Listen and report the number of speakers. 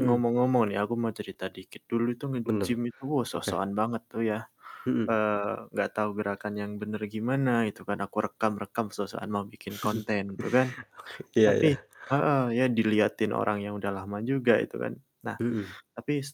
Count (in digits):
2